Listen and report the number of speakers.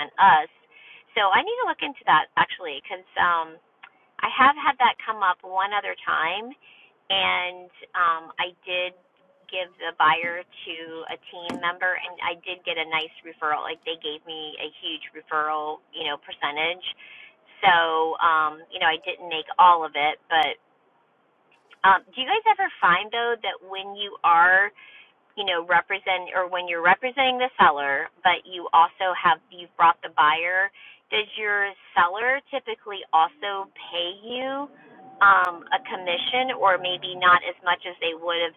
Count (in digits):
1